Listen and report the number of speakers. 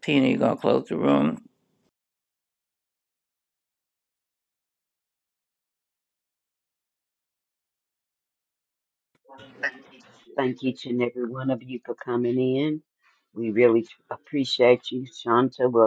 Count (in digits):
2